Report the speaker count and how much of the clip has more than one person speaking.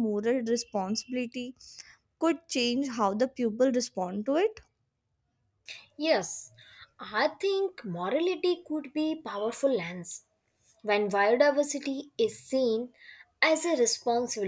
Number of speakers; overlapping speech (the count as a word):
two, no overlap